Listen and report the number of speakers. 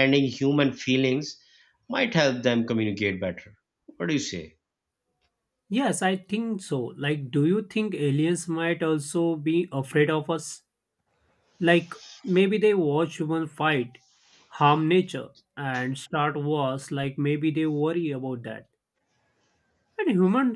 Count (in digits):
2